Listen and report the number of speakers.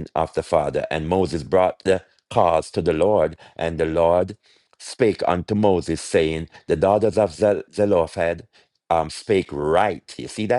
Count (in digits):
1